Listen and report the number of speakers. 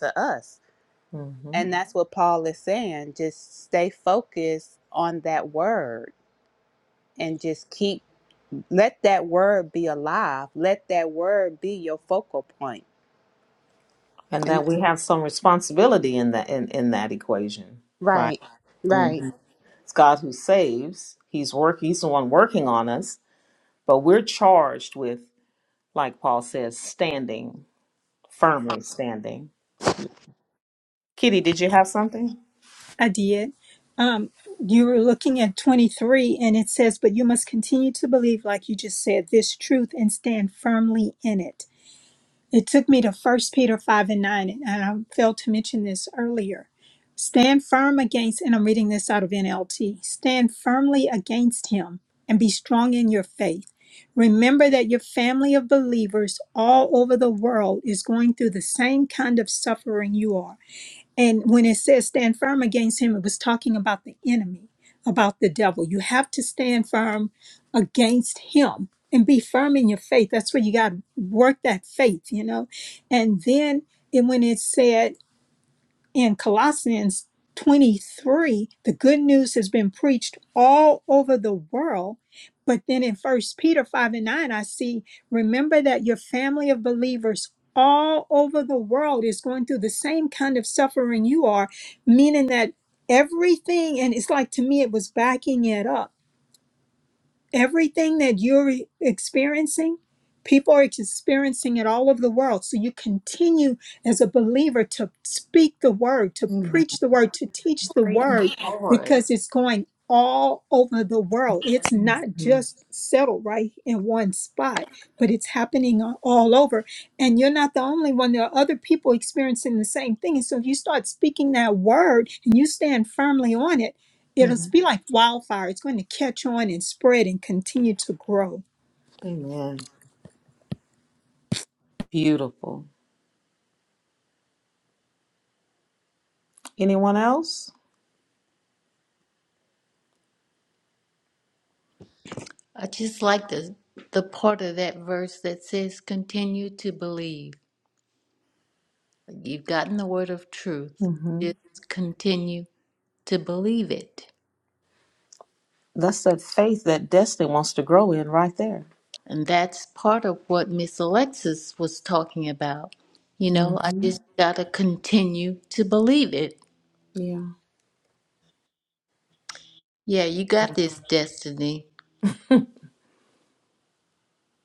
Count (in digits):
4